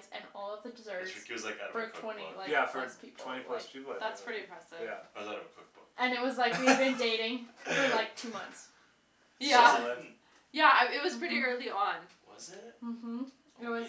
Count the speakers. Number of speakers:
4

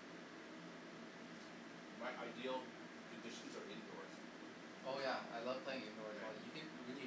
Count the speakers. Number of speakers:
2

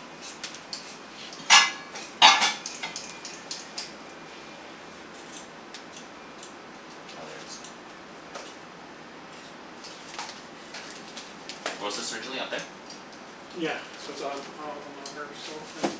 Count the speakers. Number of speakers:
2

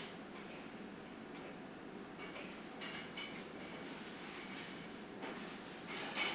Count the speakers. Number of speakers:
0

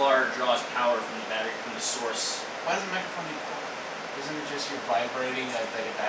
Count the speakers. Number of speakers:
2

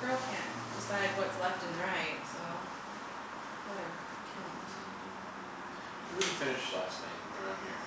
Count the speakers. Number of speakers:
2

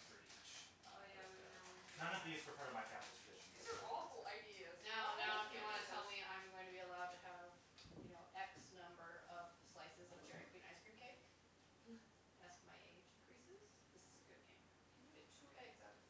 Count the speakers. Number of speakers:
4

